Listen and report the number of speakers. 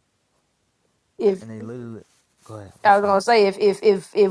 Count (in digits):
2